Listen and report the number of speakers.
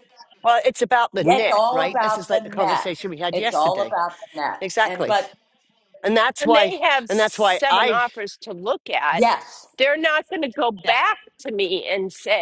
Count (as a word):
three